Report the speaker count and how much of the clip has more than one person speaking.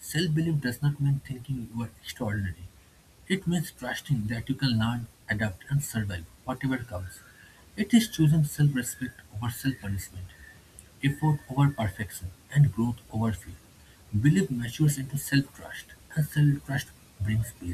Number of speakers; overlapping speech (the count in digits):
1, no overlap